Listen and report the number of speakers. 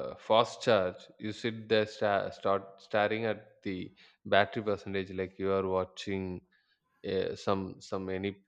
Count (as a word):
one